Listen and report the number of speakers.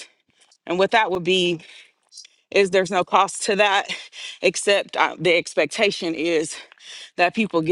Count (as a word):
one